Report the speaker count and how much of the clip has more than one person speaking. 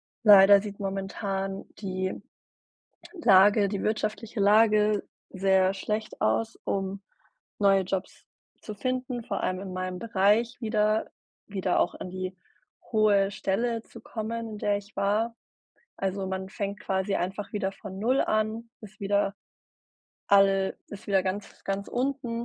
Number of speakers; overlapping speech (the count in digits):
1, no overlap